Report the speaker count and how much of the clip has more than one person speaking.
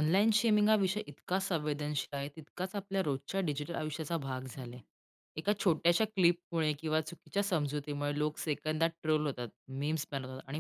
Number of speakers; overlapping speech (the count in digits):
1, no overlap